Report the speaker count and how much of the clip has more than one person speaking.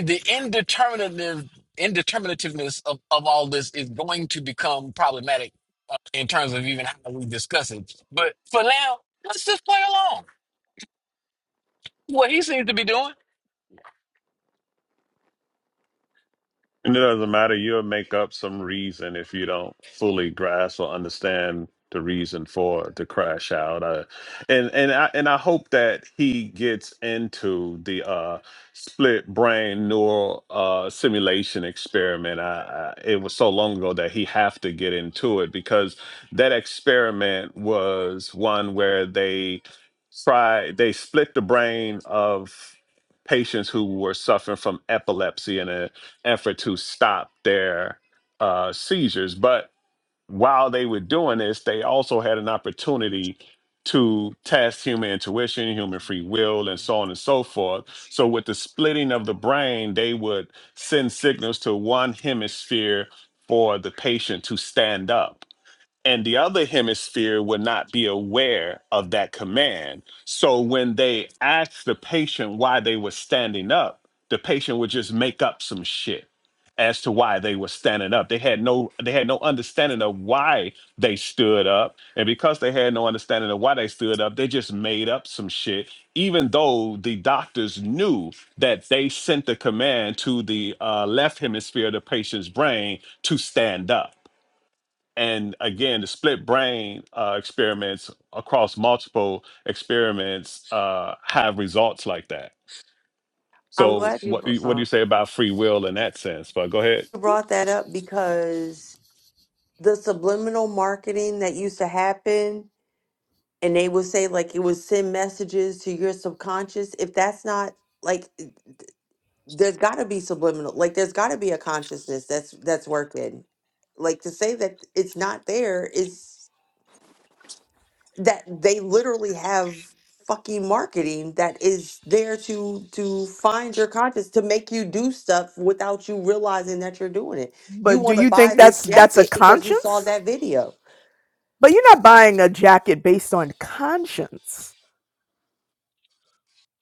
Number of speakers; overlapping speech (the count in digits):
4, about 2%